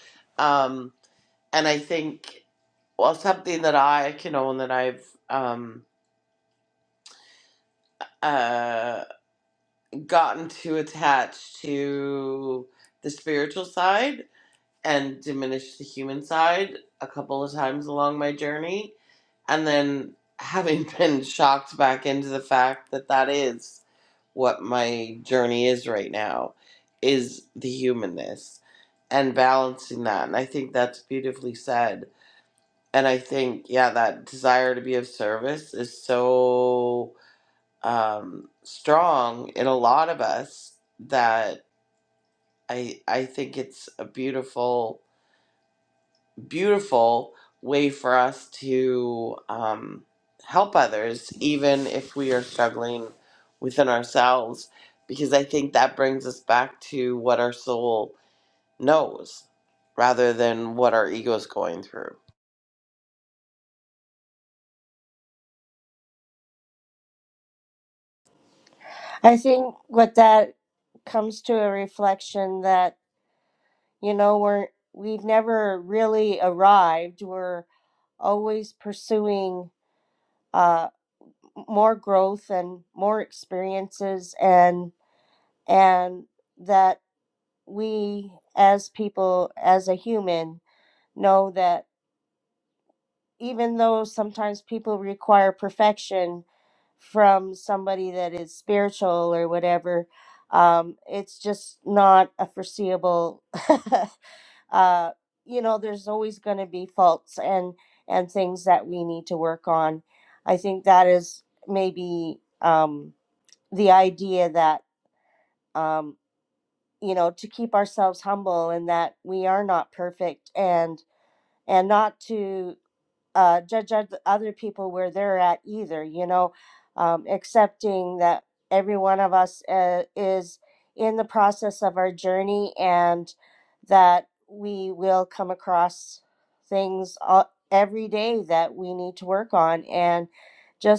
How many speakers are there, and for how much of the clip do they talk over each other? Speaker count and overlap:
2, no overlap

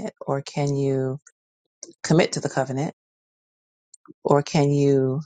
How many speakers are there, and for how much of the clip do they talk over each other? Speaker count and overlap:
1, no overlap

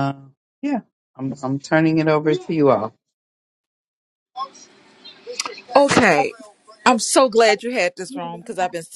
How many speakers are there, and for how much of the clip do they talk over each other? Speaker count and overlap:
2, no overlap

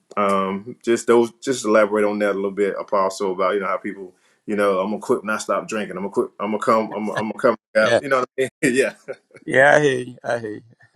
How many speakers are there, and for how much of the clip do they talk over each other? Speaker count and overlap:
2, about 2%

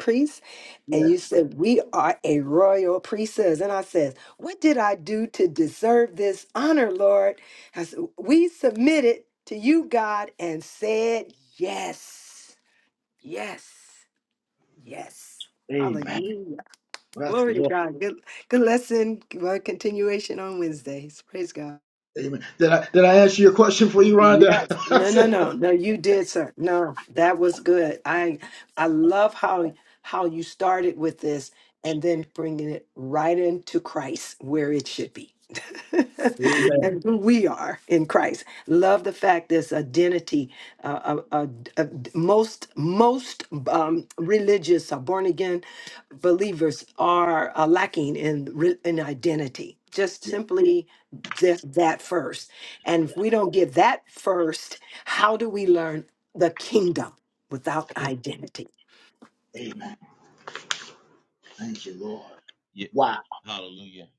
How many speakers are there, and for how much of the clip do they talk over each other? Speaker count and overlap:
3, about 4%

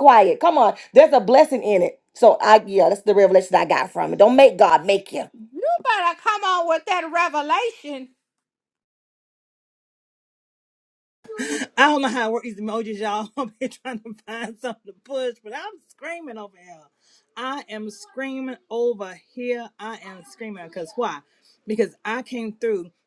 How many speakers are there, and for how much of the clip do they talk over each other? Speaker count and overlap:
3, no overlap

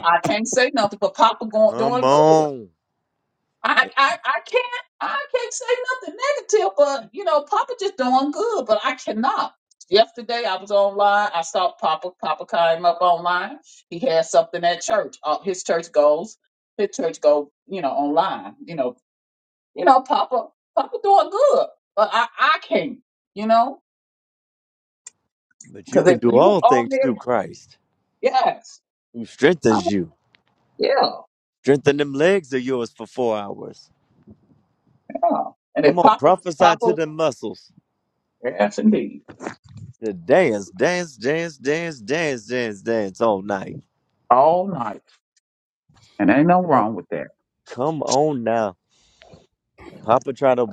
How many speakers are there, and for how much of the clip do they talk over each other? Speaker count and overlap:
2, about 6%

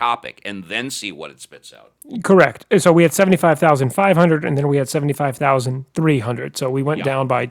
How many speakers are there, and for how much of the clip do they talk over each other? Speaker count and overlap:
2, about 2%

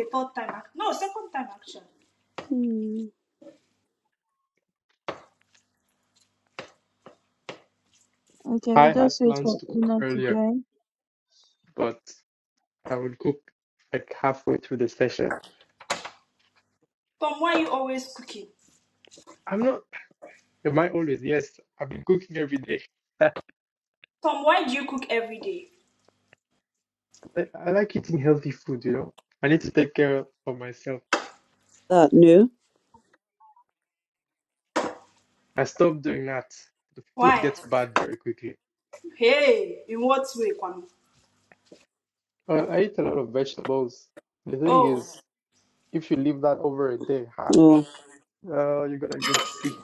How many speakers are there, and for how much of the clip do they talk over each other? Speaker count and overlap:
4, about 5%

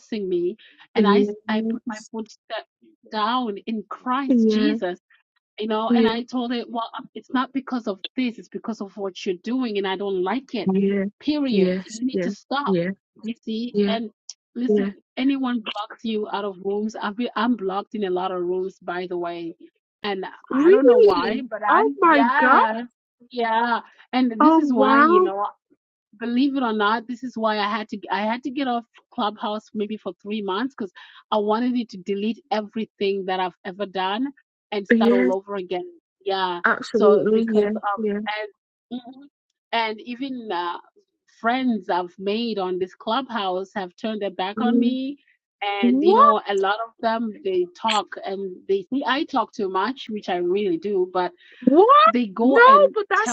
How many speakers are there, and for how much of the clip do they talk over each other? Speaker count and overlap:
2, about 17%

